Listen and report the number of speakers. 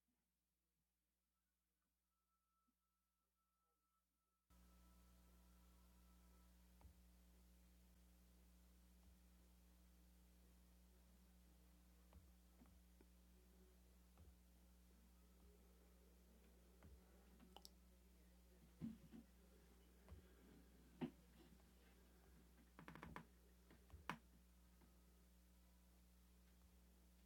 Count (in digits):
0